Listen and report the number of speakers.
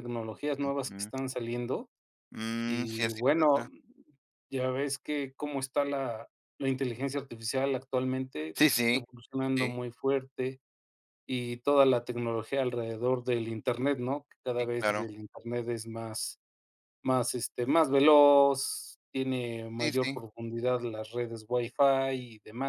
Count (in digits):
2